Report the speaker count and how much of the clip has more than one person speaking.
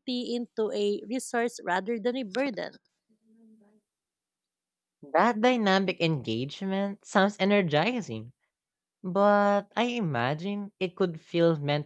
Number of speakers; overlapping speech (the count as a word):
two, no overlap